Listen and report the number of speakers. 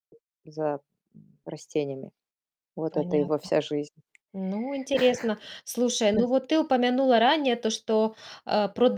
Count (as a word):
two